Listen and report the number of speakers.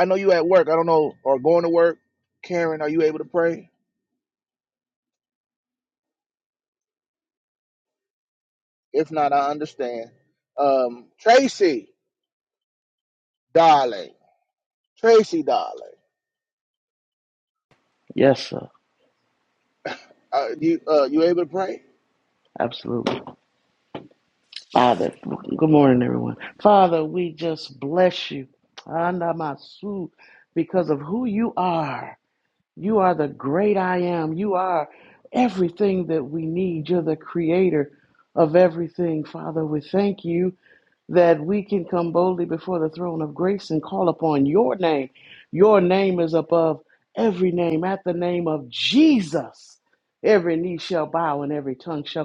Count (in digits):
2